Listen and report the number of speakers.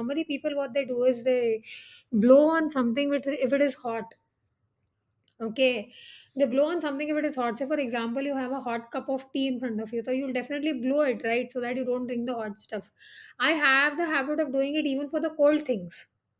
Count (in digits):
1